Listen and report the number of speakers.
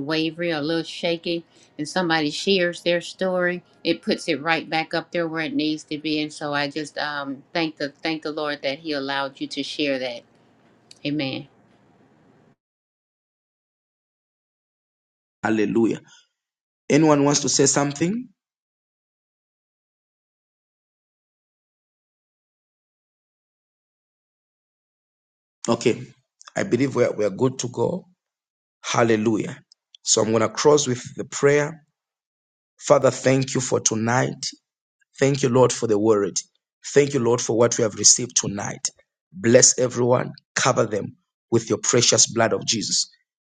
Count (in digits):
2